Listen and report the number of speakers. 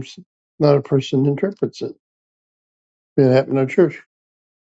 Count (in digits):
1